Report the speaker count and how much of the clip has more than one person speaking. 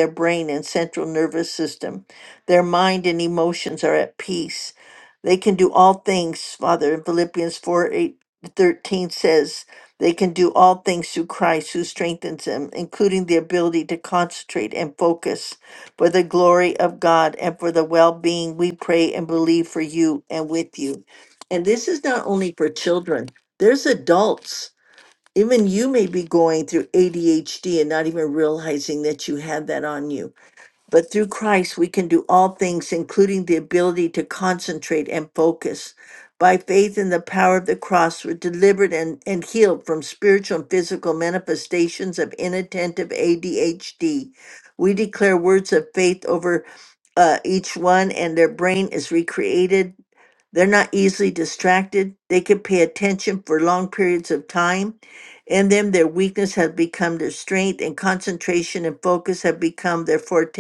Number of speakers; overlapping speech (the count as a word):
one, no overlap